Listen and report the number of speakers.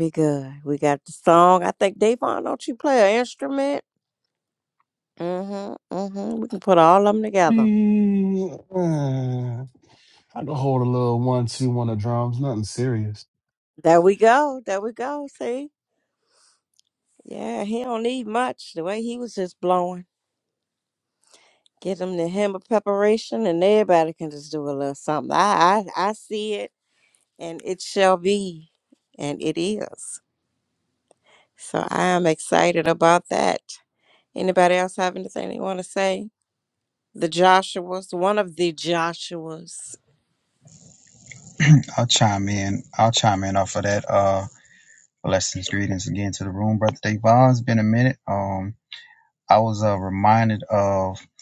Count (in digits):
3